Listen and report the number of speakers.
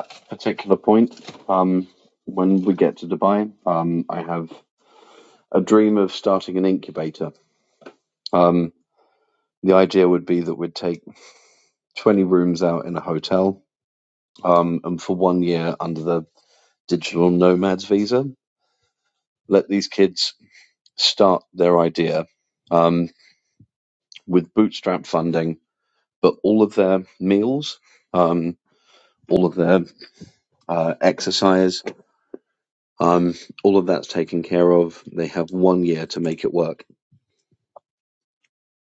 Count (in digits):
1